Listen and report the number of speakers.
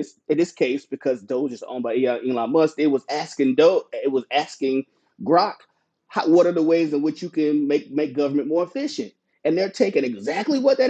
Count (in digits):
1